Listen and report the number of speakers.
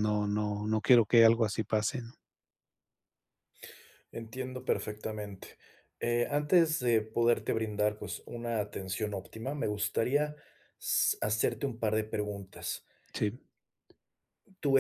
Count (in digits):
2